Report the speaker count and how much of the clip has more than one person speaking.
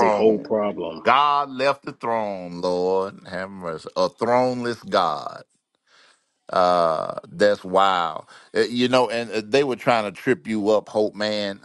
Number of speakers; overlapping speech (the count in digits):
2, about 4%